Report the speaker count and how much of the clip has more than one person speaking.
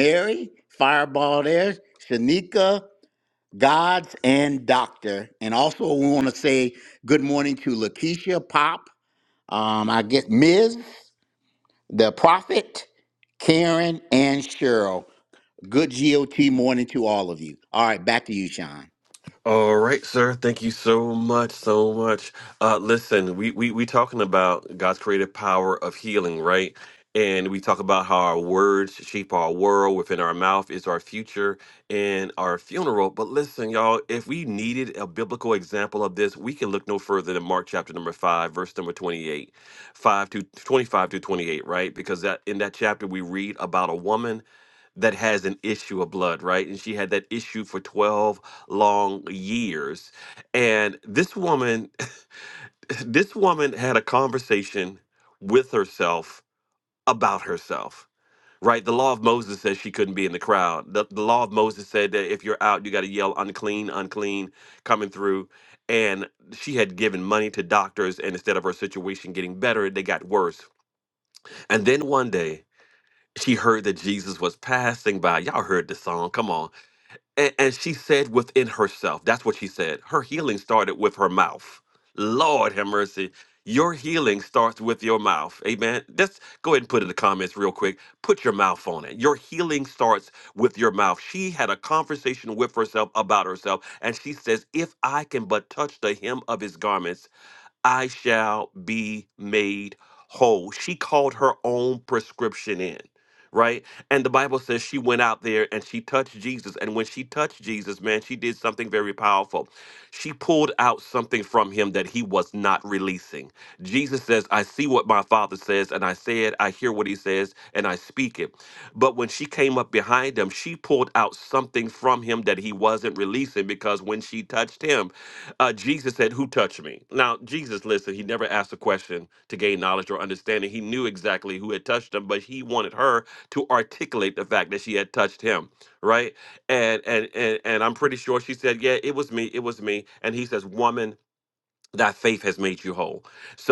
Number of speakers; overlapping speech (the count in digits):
2, no overlap